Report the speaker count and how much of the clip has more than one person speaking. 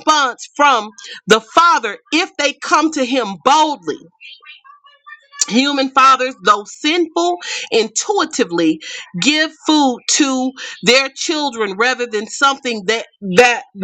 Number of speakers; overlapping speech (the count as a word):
one, no overlap